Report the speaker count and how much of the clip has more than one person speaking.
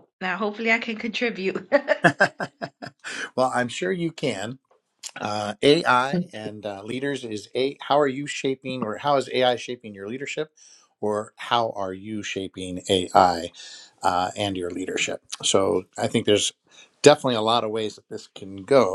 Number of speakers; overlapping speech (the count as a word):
two, no overlap